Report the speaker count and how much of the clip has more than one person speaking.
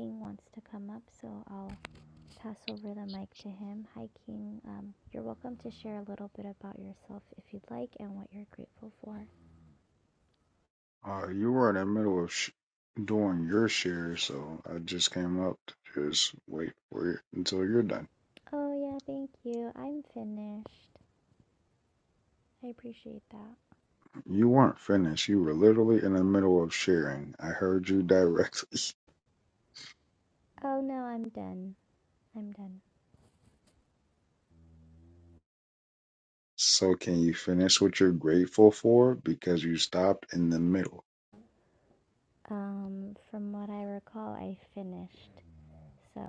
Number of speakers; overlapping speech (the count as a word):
two, no overlap